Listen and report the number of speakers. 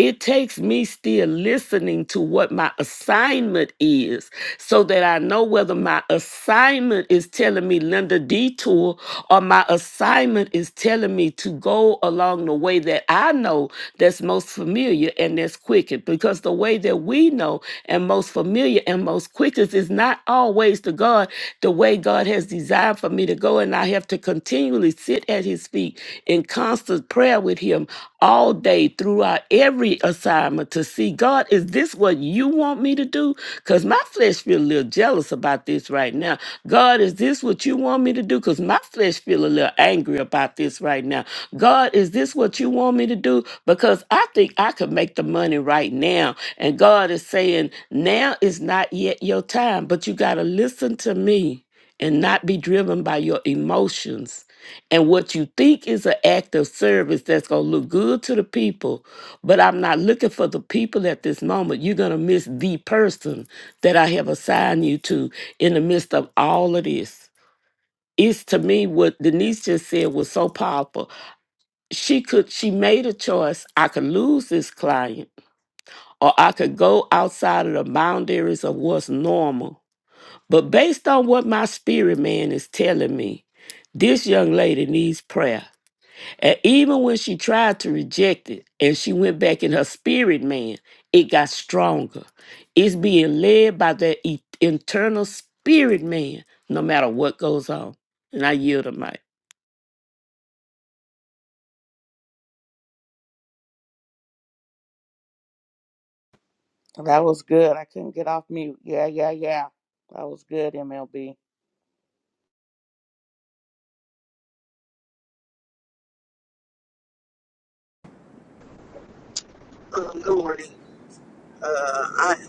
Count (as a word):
three